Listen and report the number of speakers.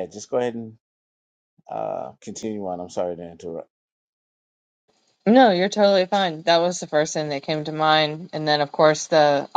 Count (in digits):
2